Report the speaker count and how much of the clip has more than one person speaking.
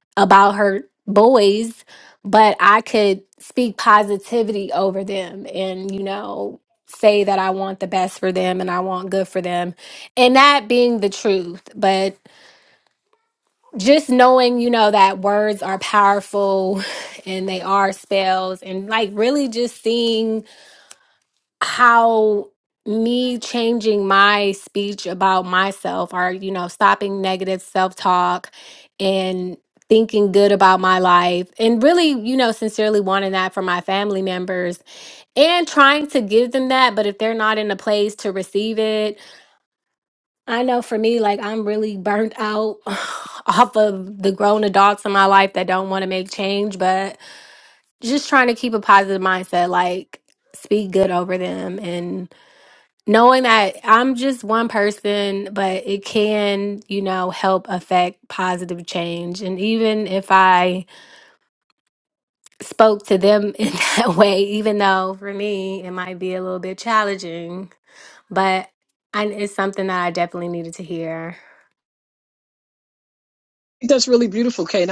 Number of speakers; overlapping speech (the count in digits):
2, no overlap